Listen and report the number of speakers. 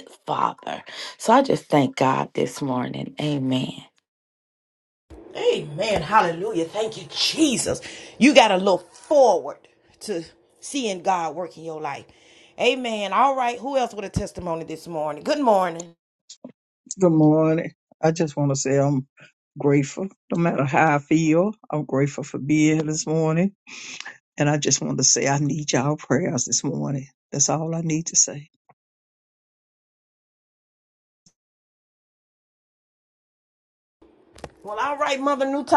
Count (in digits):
3